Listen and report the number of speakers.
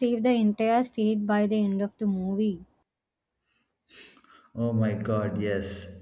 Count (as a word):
two